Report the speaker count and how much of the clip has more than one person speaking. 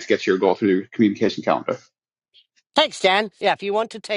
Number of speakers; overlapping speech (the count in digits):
2, no overlap